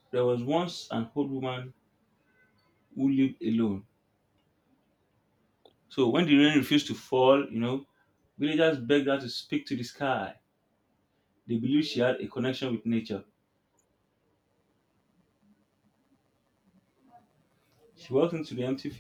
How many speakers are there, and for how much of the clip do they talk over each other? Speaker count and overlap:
one, no overlap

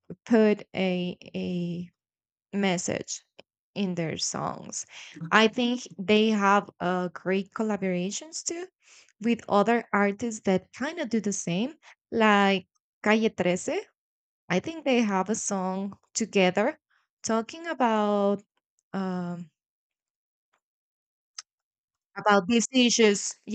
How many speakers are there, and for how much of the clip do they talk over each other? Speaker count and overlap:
one, no overlap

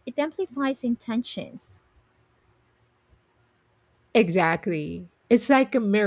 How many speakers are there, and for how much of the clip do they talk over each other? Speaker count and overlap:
two, no overlap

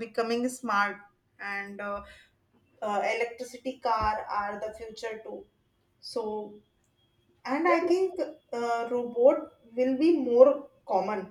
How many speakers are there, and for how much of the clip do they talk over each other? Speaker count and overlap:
one, no overlap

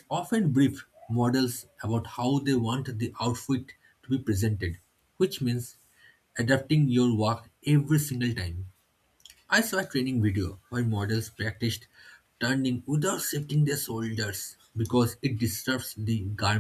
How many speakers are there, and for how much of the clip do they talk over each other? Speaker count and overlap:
one, no overlap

